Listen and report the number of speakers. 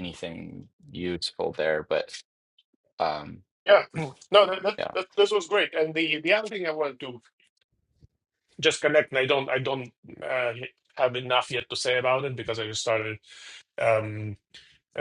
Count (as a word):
two